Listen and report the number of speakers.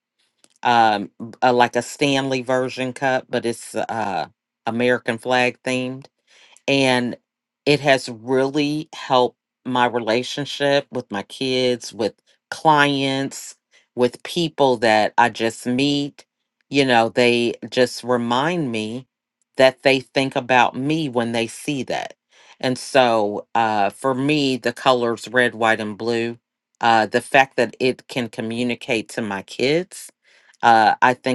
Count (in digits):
1